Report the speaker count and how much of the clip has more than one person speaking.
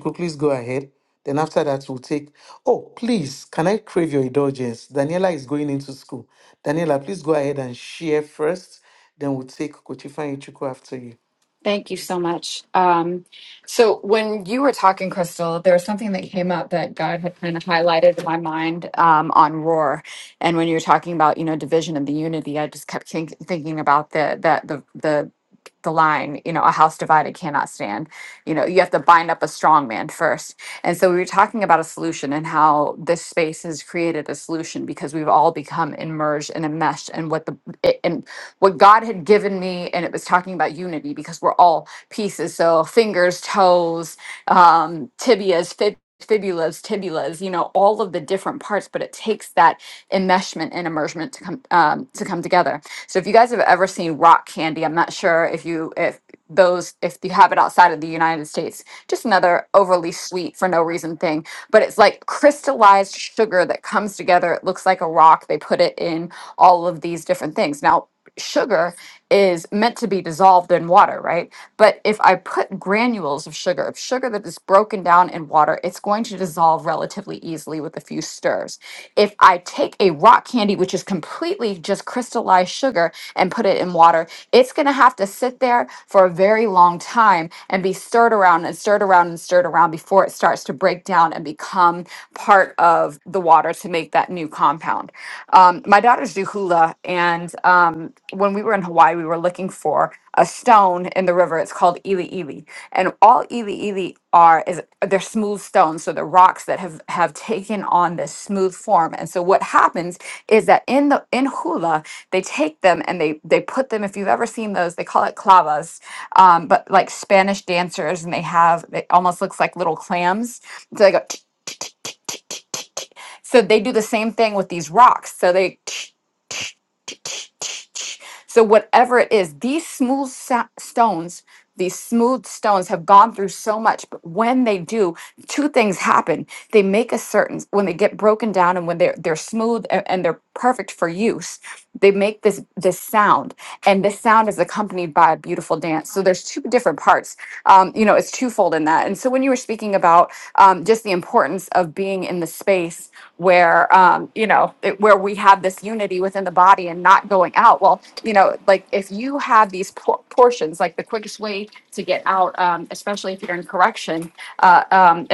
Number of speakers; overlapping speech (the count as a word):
two, no overlap